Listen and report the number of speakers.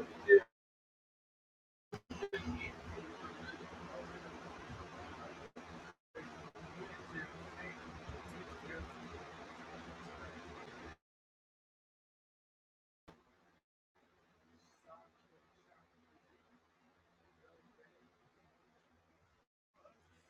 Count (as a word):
zero